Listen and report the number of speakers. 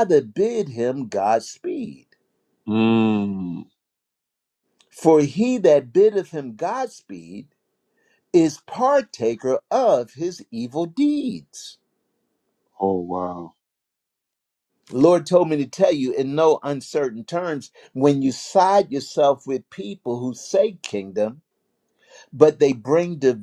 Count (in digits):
2